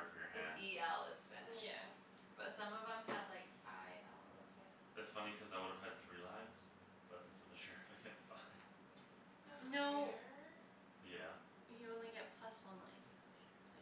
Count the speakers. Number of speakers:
3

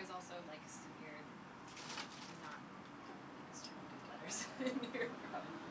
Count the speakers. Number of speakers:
1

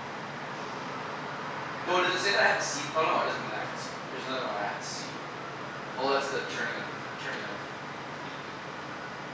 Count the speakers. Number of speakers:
1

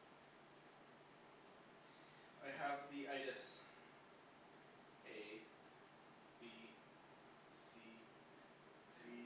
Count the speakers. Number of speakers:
1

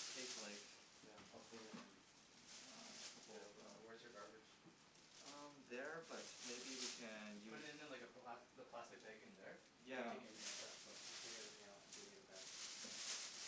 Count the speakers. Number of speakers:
3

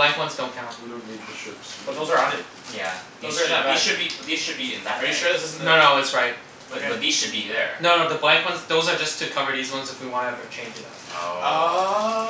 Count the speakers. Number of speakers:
4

